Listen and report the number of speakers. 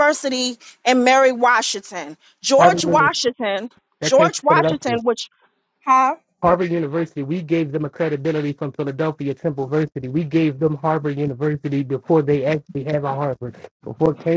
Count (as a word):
two